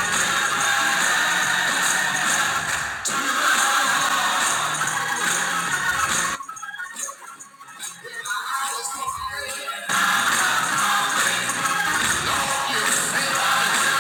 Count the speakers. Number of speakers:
0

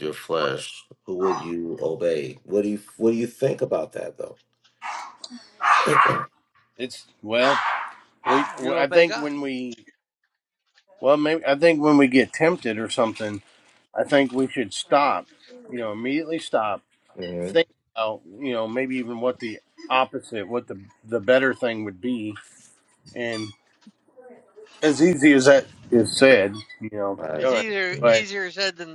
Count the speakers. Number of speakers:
3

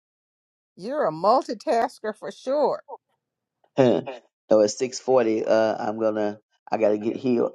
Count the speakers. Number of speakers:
2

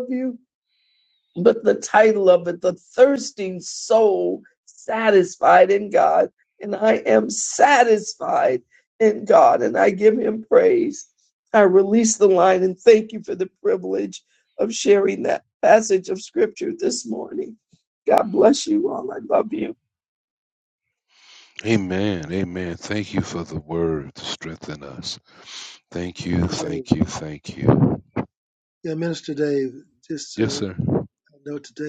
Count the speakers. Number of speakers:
3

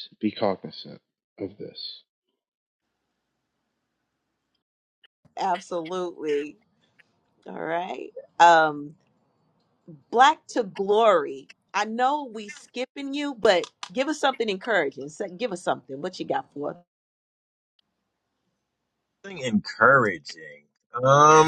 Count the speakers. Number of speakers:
3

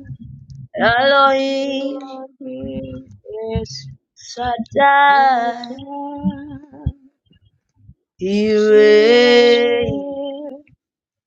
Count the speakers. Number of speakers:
2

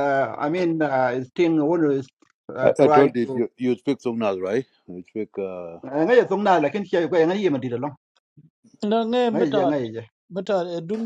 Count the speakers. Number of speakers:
3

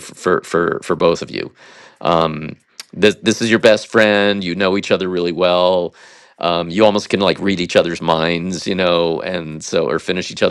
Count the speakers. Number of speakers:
1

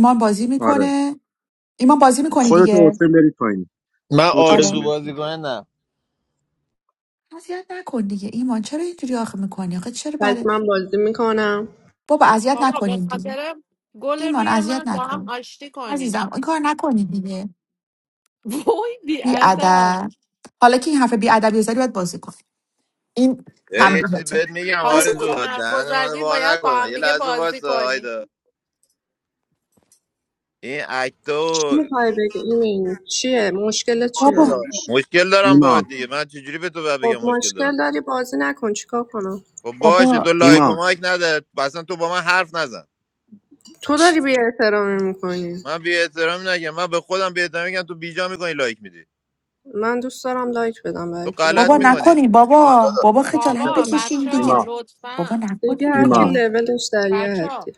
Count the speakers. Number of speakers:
5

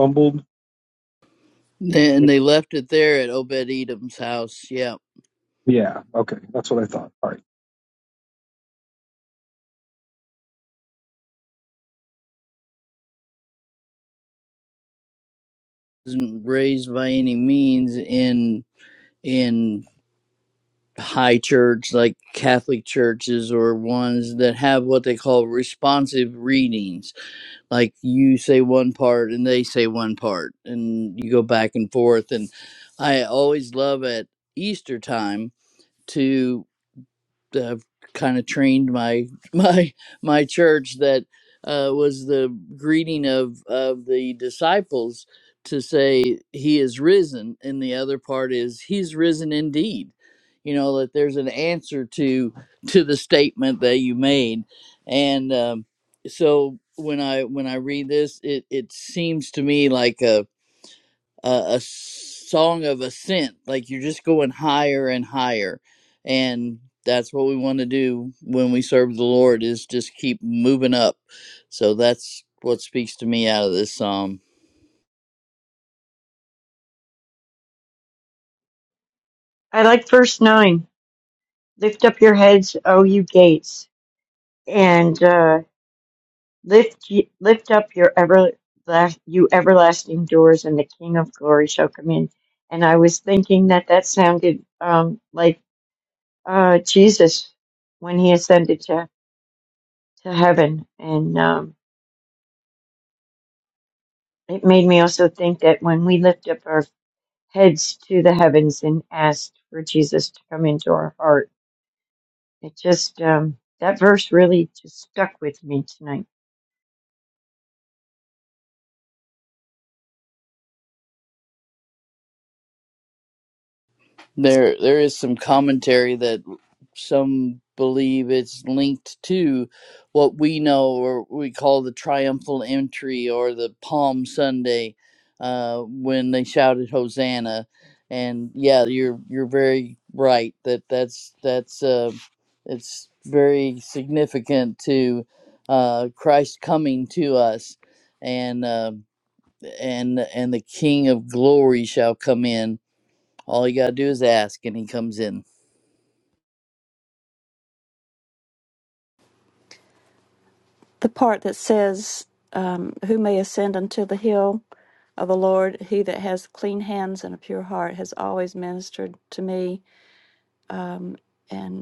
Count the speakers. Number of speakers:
4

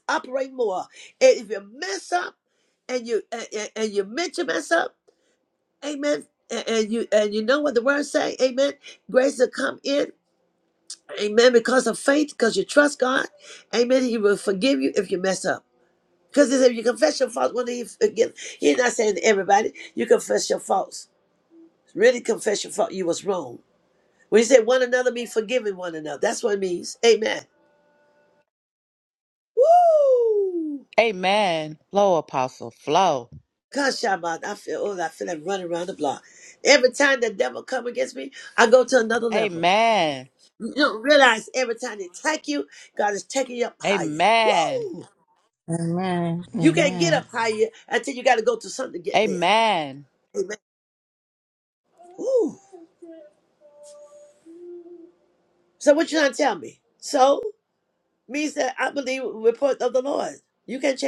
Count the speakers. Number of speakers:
3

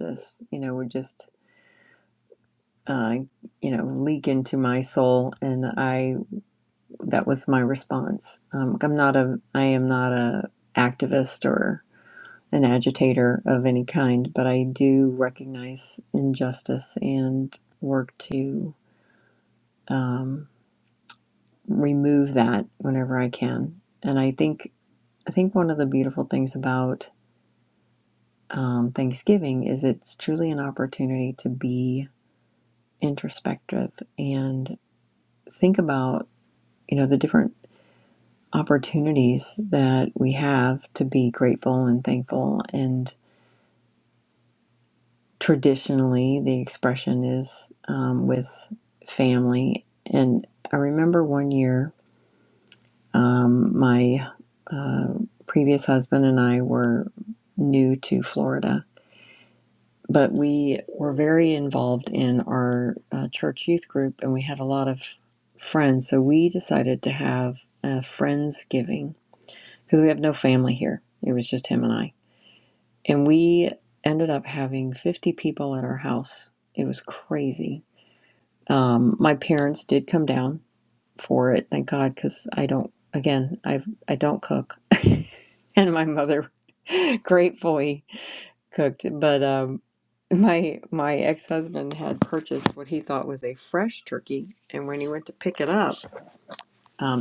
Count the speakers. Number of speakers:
1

